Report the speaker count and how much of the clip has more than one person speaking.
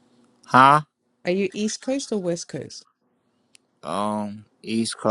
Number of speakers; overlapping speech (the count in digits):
2, no overlap